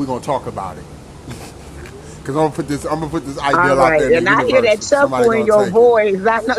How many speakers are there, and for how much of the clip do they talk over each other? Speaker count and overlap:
two, about 36%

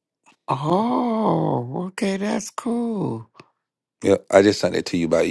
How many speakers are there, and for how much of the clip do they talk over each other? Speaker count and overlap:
two, no overlap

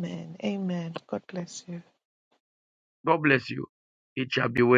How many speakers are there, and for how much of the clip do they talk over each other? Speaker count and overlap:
two, no overlap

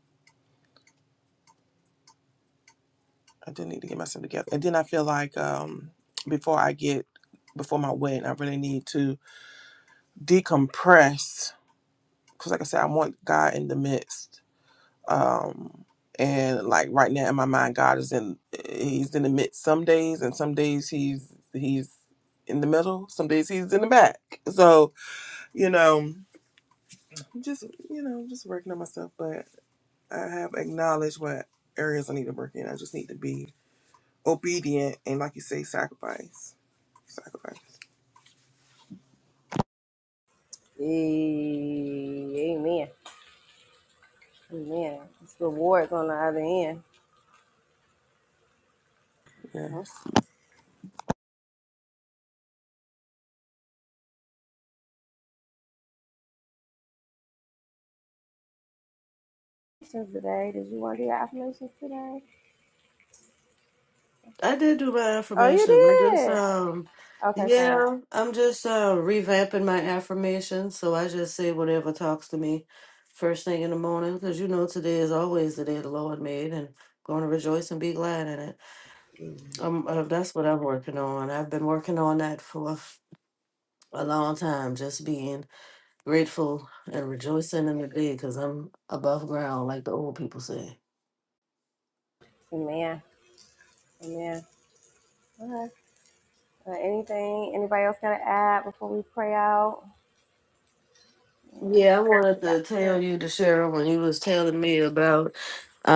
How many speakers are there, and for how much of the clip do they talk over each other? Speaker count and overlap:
three, about 2%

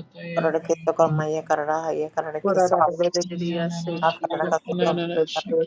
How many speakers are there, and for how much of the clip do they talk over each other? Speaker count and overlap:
three, about 41%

